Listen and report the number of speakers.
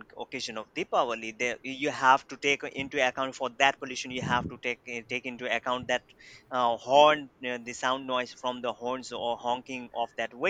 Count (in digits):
1